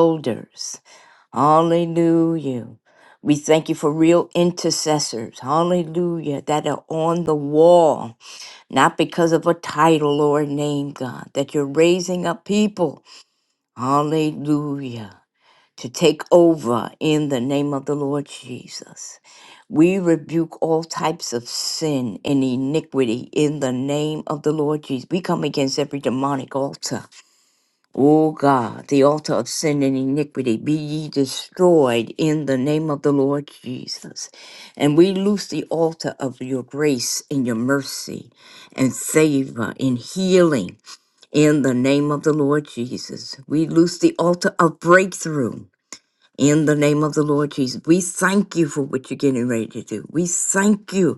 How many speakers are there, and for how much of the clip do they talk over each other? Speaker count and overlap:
1, no overlap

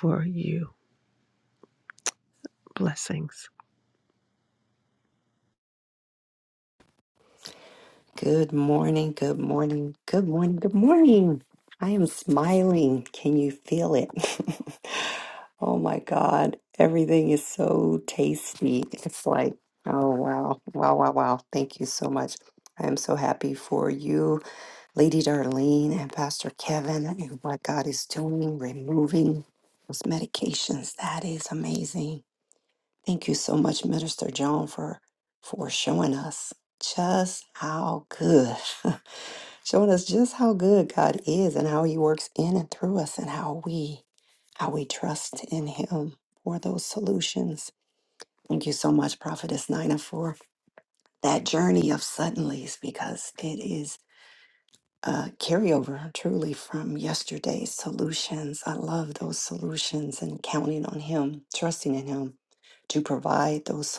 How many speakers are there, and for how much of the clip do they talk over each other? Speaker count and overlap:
2, no overlap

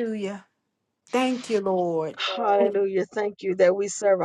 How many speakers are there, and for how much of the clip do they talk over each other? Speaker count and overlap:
2, no overlap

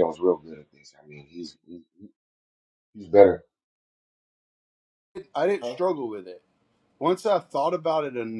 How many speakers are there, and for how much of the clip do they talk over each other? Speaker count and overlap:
2, about 2%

